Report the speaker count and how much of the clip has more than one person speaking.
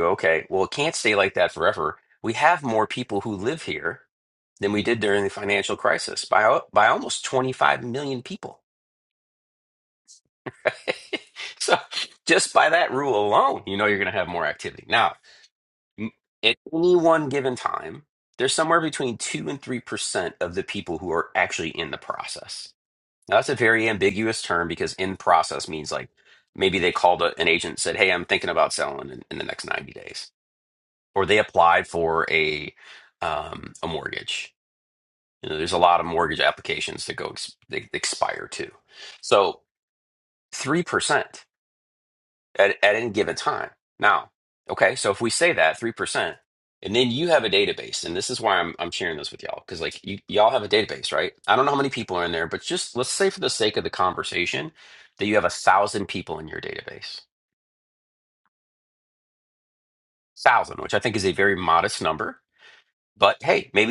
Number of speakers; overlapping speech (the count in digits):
1, no overlap